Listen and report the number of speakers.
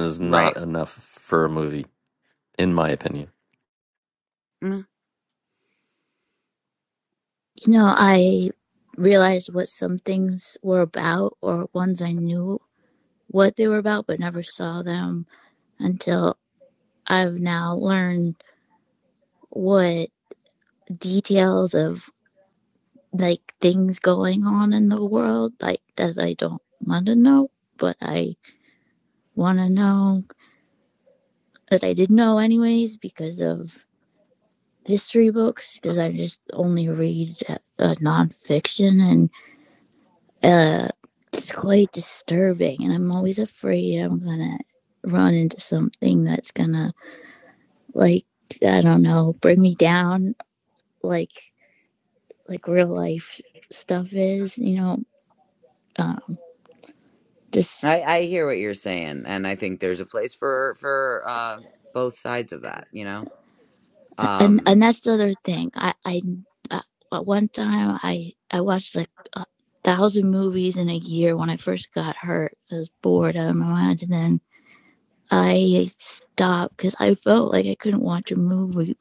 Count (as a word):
three